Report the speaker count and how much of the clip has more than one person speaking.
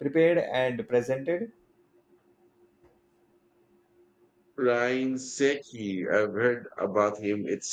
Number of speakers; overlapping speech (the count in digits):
2, no overlap